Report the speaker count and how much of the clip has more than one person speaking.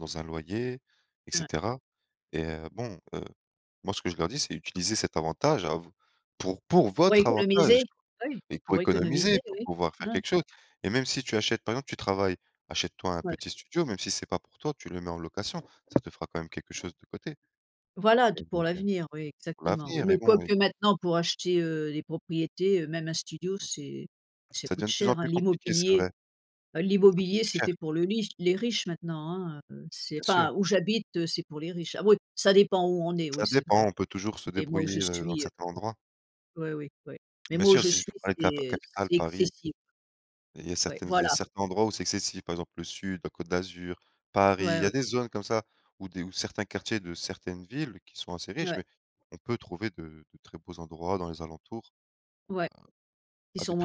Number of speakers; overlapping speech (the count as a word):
two, about 19%